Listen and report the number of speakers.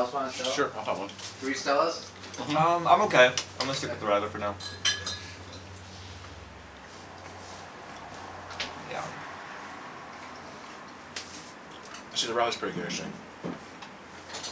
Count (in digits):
3